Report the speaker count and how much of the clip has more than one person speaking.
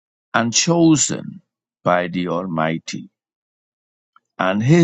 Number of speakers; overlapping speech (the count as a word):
one, no overlap